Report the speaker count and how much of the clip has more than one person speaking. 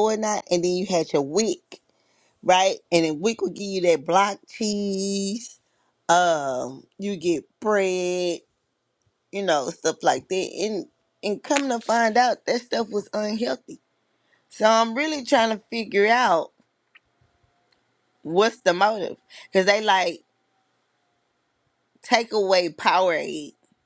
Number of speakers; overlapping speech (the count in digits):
1, no overlap